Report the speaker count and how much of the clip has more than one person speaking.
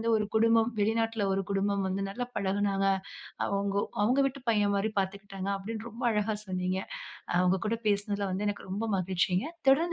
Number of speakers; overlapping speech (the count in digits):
1, no overlap